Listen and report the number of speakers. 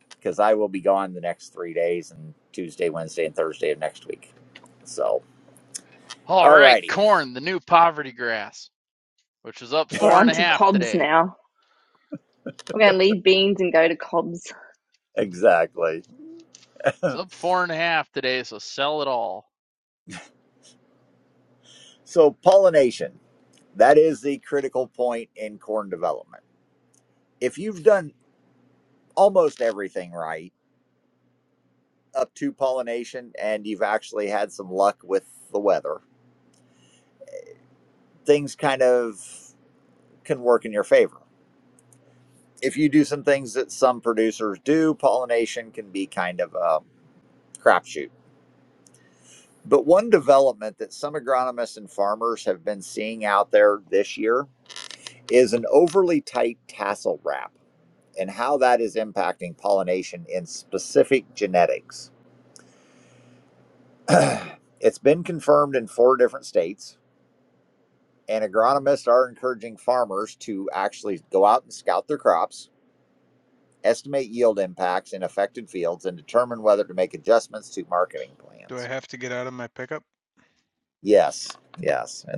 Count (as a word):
four